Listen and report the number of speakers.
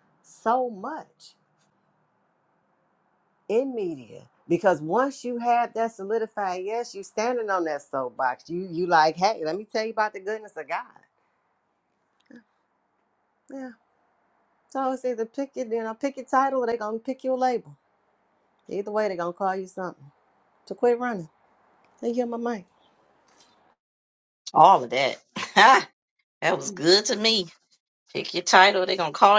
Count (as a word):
two